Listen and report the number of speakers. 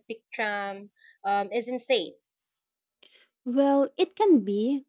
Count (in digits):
2